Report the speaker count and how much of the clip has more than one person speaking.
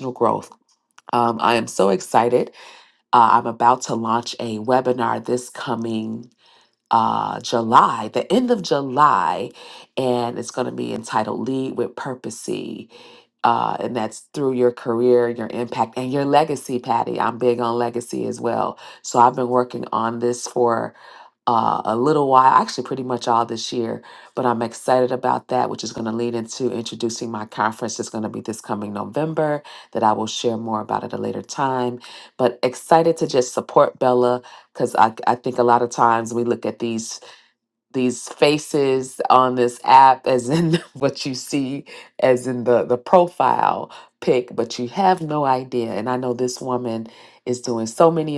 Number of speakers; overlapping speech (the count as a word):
one, no overlap